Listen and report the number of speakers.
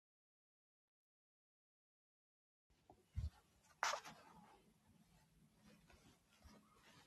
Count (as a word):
zero